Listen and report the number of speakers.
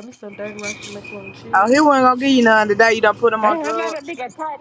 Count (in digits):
3